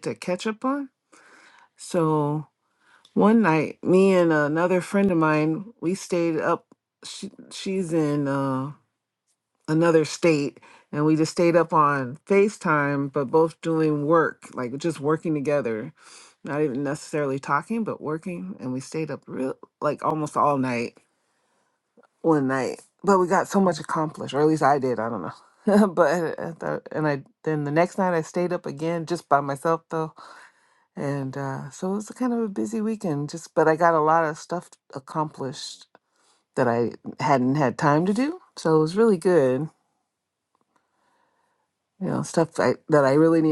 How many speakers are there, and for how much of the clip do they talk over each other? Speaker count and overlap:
1, no overlap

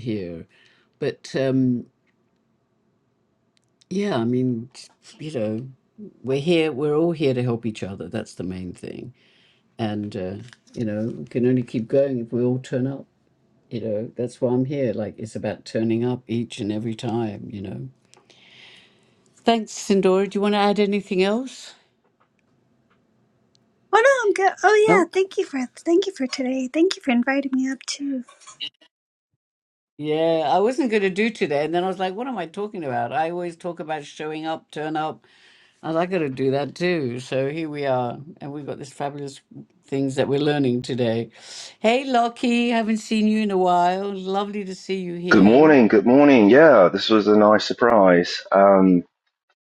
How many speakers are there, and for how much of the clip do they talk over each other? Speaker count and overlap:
3, about 1%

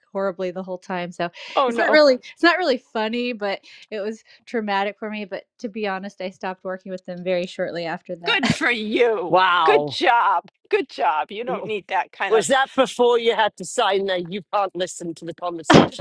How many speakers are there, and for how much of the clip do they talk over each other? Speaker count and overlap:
3, about 10%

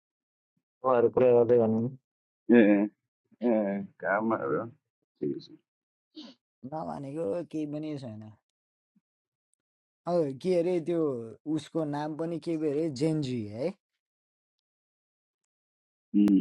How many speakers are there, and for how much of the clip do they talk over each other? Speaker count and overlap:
3, no overlap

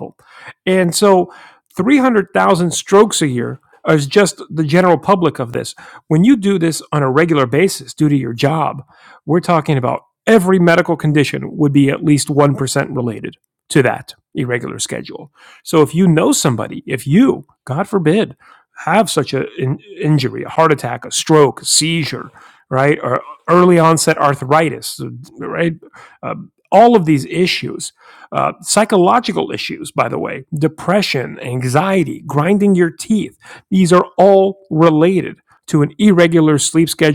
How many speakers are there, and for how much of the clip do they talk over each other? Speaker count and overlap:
1, no overlap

